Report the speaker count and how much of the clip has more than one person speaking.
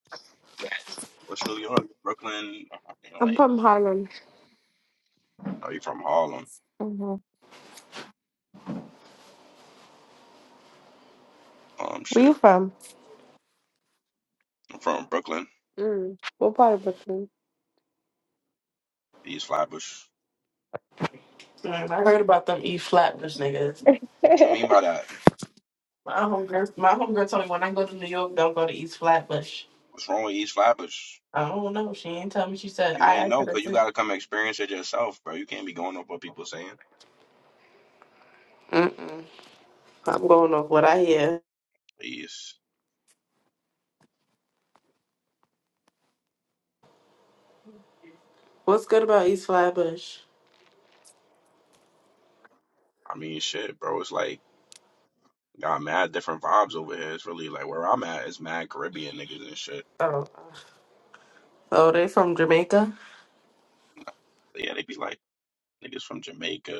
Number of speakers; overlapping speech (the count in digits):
3, about 2%